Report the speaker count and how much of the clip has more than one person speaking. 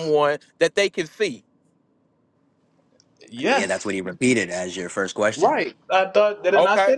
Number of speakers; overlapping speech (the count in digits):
3, about 13%